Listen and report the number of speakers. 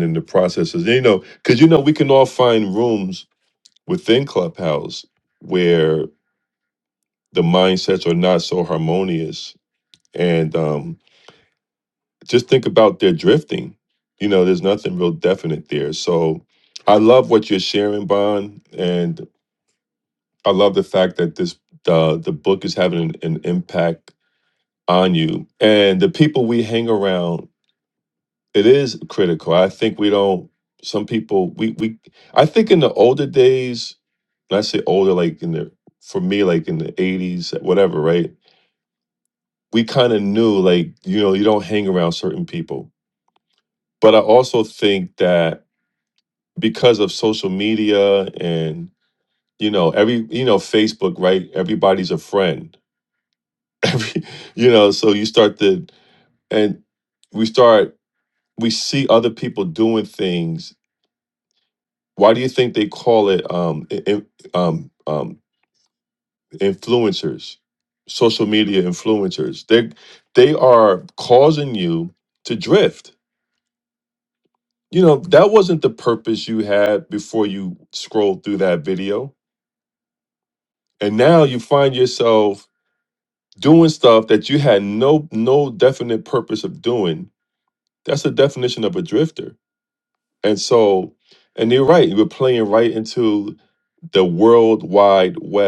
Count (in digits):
1